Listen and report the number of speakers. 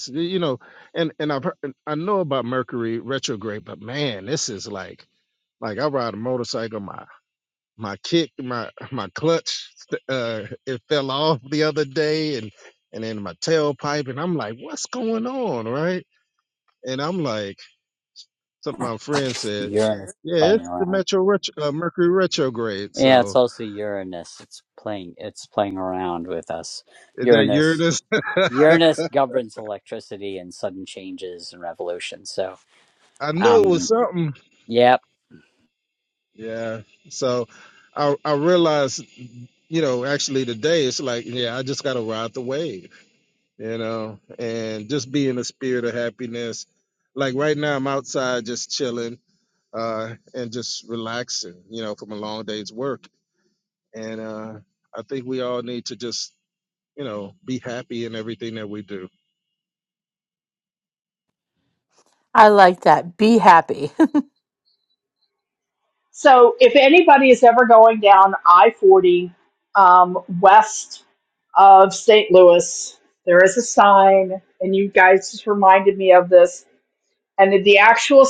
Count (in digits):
4